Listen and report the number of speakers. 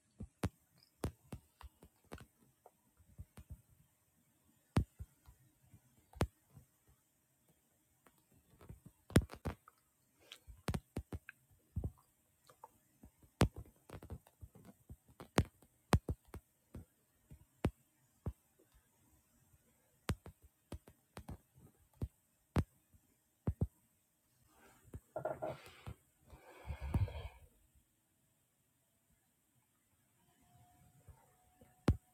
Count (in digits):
0